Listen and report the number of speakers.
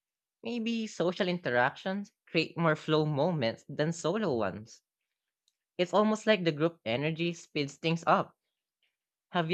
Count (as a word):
one